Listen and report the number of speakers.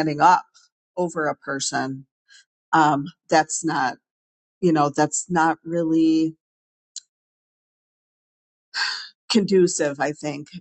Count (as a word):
one